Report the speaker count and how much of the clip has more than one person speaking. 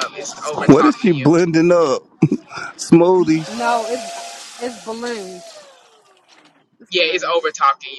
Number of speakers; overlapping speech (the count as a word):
three, about 15%